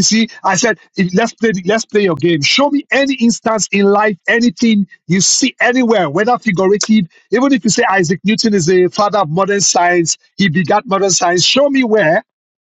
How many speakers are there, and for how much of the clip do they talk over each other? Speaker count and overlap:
1, no overlap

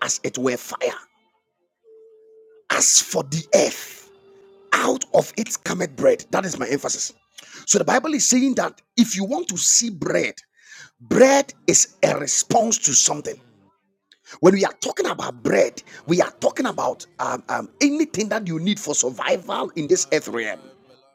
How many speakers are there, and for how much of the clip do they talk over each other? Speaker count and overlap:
1, no overlap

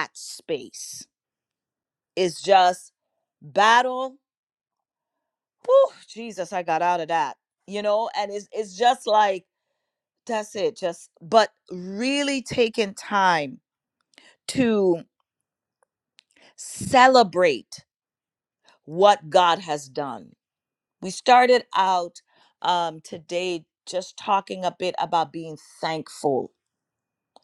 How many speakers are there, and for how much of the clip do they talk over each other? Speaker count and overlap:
1, no overlap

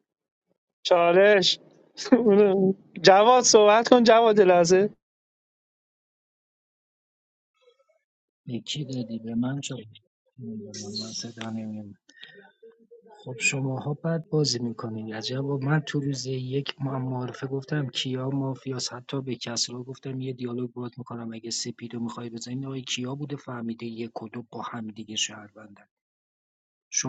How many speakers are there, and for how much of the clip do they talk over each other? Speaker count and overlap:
2, no overlap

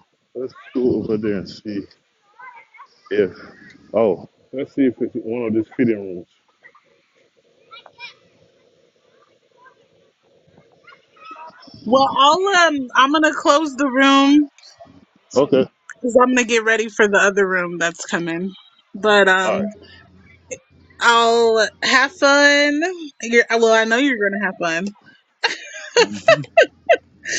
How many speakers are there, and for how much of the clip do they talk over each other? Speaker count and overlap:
2, about 1%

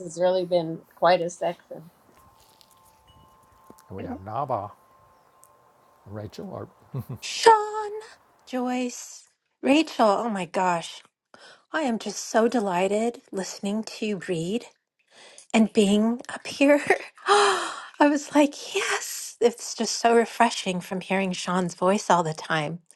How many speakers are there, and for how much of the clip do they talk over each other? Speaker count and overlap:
3, no overlap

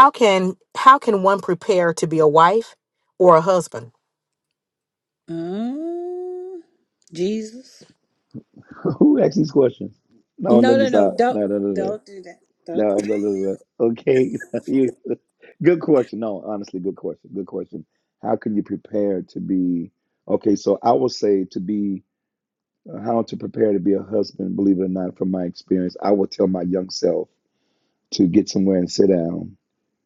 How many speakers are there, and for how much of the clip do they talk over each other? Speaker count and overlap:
3, about 5%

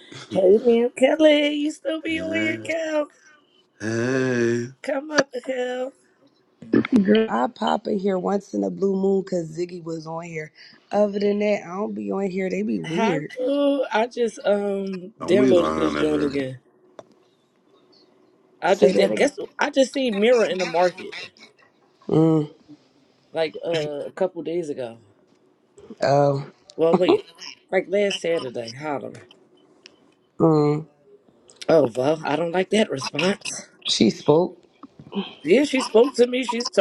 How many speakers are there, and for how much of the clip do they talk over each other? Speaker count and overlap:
3, about 8%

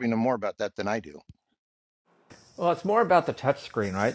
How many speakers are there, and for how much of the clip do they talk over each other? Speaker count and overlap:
2, no overlap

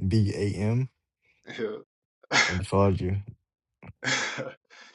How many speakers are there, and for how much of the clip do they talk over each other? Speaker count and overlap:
2, about 2%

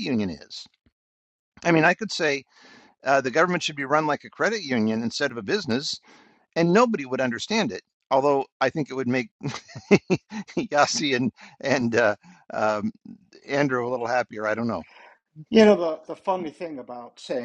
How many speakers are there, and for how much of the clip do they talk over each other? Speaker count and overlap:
2, no overlap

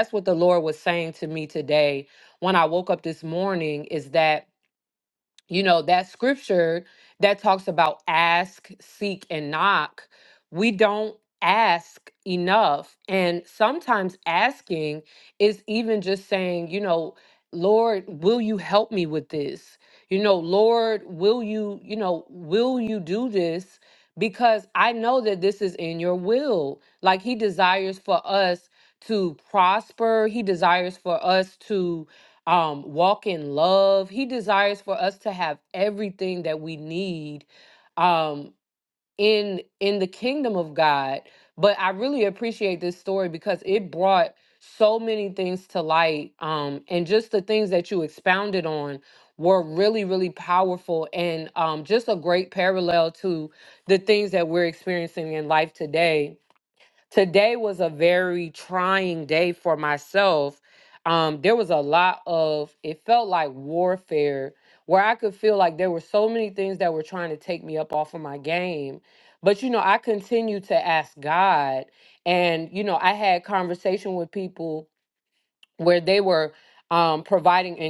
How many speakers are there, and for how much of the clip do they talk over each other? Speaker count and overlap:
1, no overlap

